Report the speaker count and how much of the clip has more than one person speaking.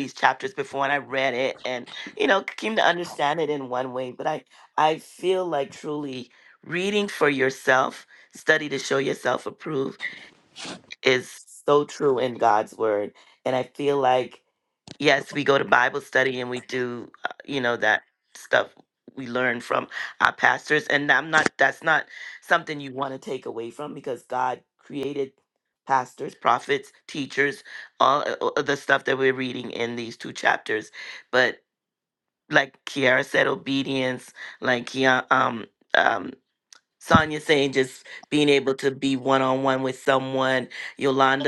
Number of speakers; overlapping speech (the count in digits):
1, no overlap